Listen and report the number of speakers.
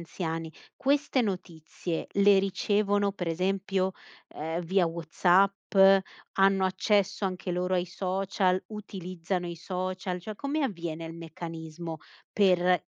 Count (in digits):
1